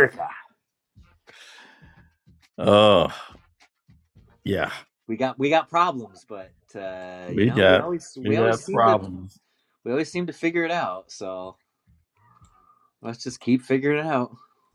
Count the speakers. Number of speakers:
2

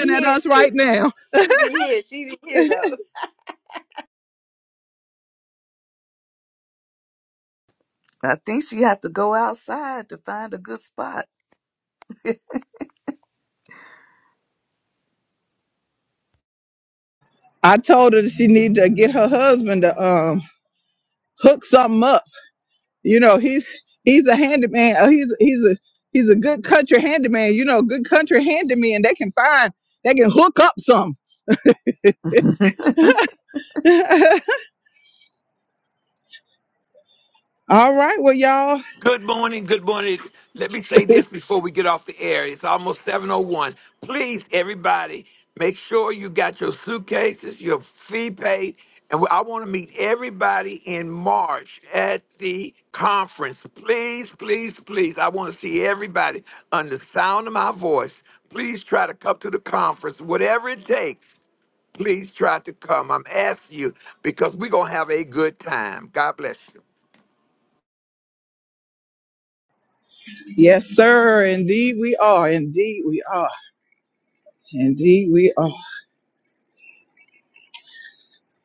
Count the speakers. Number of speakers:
4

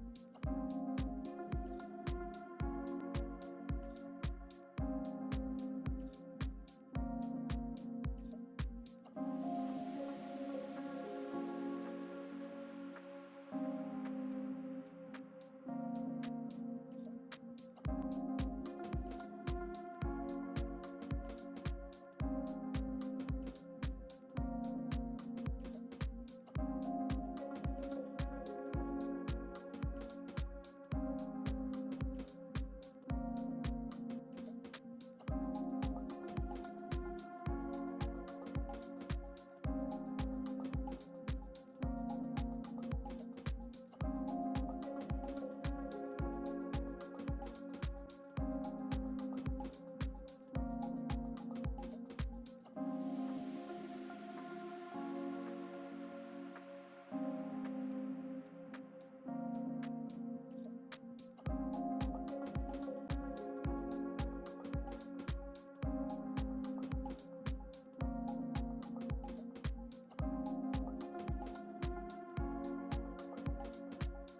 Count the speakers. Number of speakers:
0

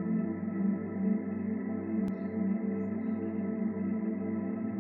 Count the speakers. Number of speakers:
0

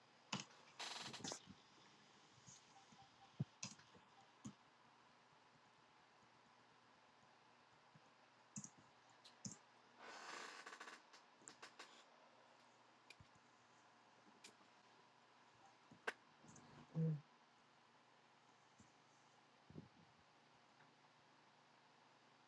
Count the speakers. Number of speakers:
0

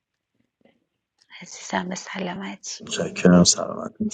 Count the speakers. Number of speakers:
2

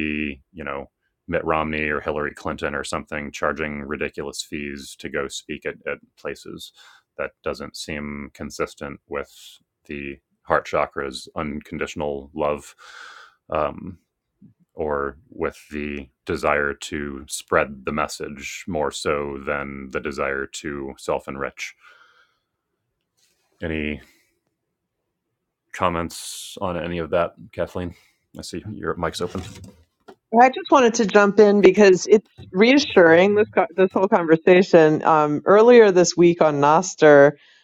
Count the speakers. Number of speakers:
2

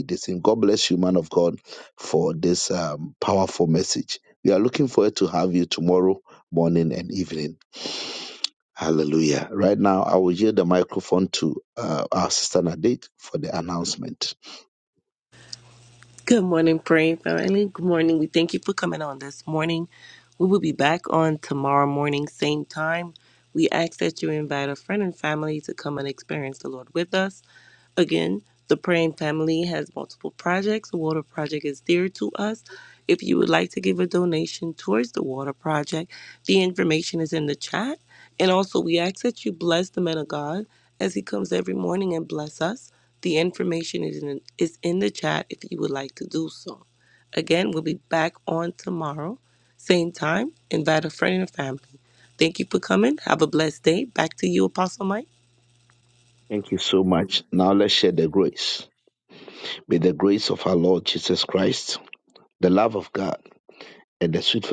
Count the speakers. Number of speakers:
2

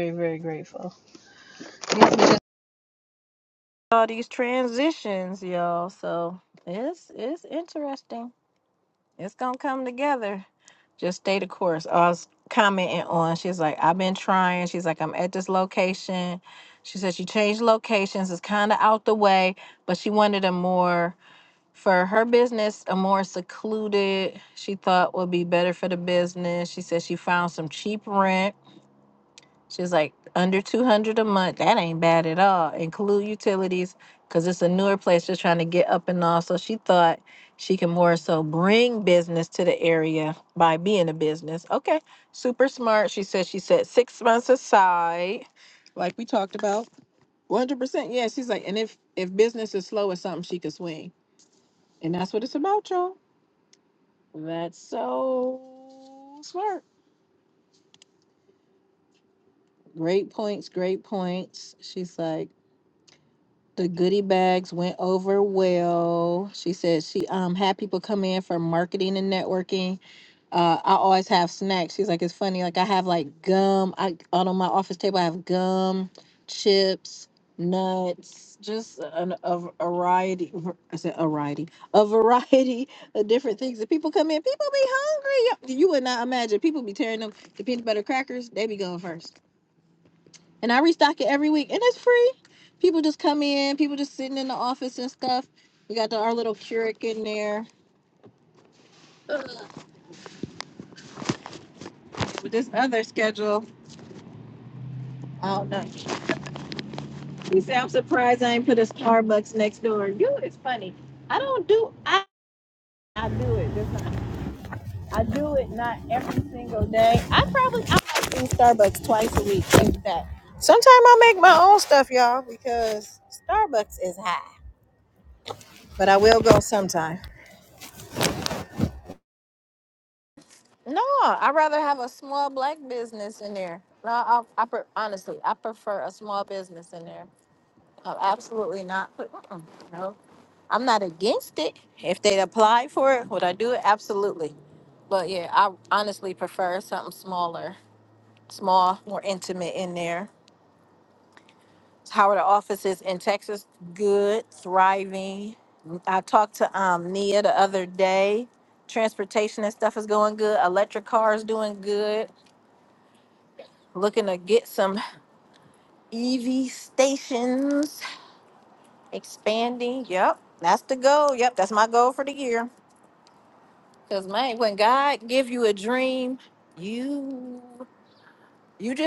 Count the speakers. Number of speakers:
1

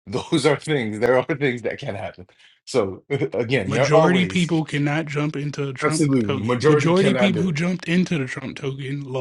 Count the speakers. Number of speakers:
2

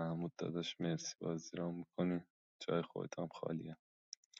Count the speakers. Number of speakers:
1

